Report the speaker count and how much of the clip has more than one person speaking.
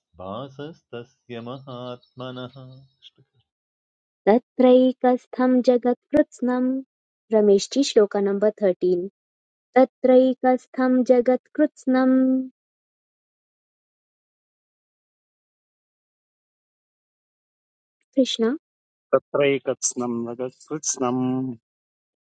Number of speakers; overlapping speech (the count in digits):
3, no overlap